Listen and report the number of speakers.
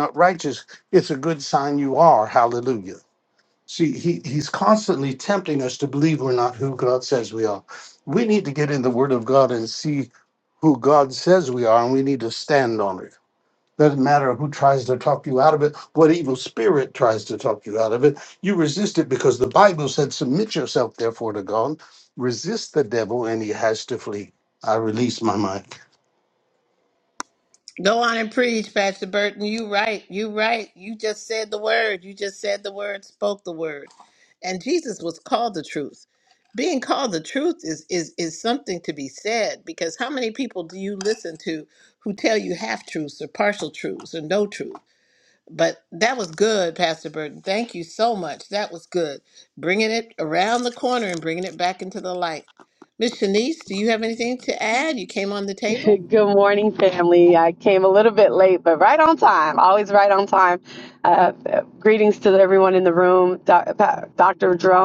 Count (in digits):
3